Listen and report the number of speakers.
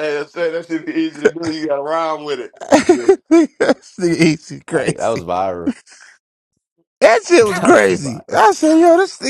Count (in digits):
3